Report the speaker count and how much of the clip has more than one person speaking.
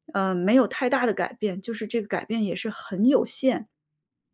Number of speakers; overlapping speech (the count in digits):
1, no overlap